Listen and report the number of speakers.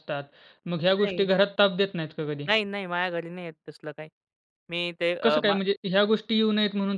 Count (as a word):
two